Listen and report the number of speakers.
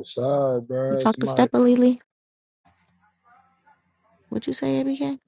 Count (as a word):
two